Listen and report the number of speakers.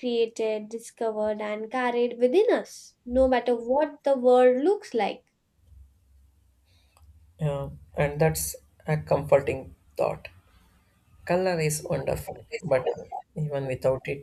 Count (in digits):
2